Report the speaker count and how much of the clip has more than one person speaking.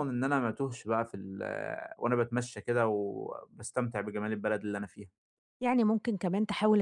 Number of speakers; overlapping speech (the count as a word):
two, no overlap